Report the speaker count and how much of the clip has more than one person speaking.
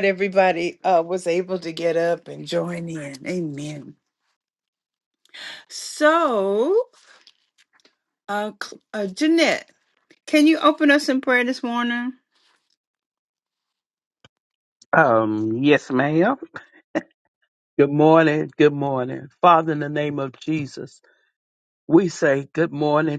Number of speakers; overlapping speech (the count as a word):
two, no overlap